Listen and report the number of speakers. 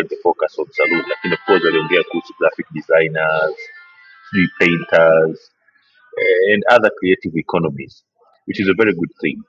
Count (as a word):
one